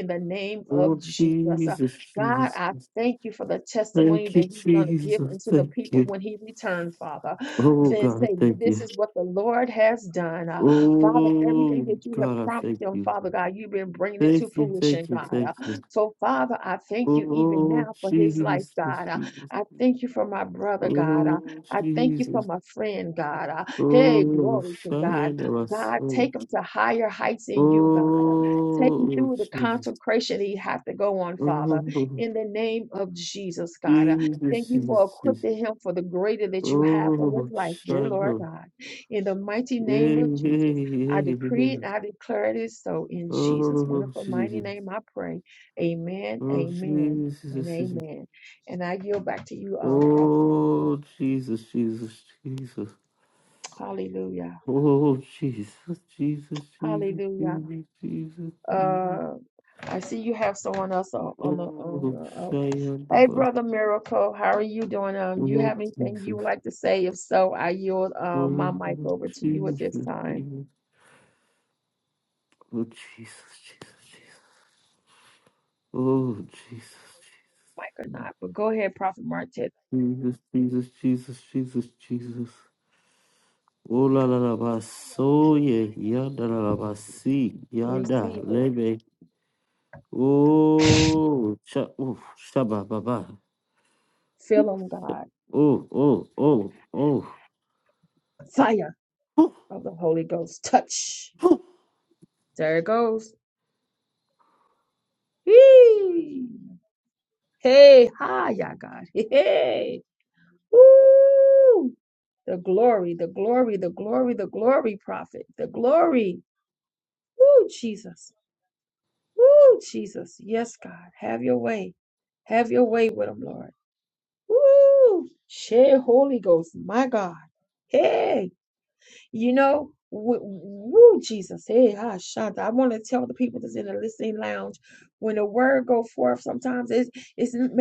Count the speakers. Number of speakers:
2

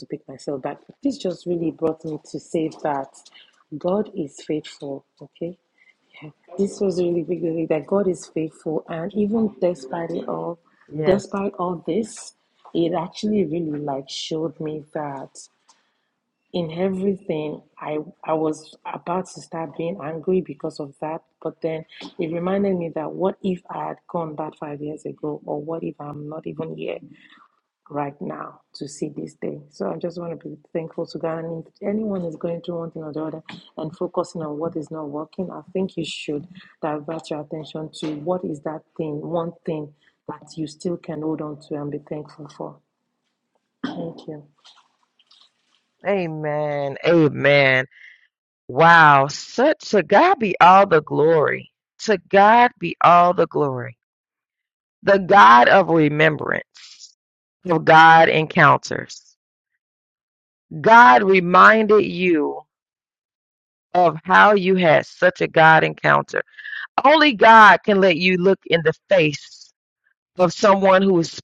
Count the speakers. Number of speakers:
2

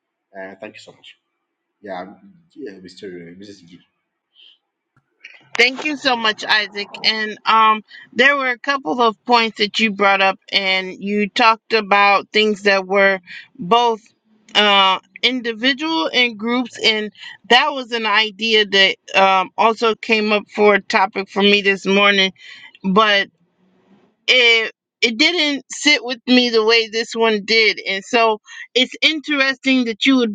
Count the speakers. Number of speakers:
2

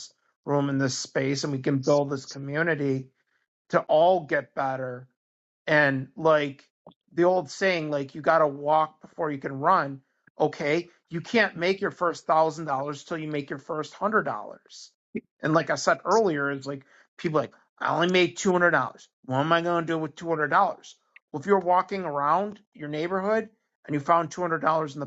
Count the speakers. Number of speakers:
1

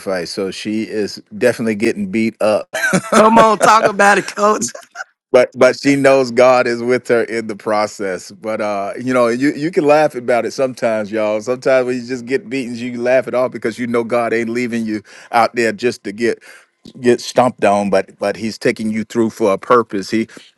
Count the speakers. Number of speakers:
2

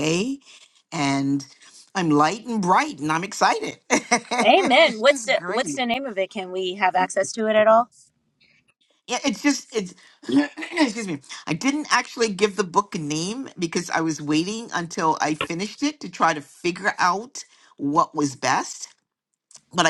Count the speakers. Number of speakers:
2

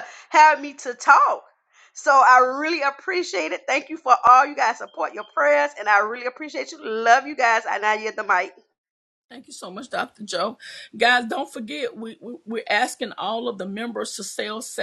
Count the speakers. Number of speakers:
2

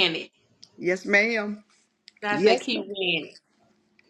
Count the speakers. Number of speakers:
2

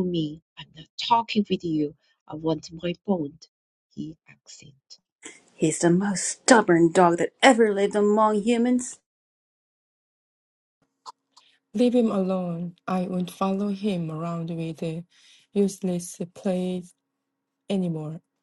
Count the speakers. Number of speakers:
3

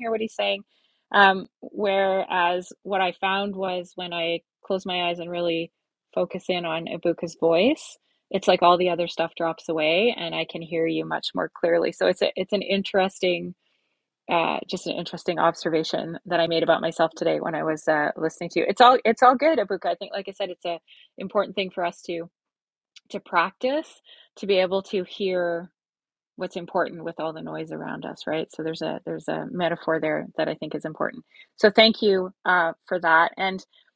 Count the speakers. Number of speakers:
1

